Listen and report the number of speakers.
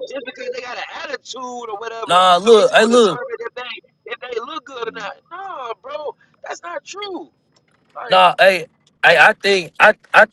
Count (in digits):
2